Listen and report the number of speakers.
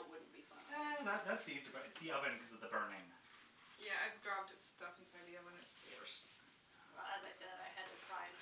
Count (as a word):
three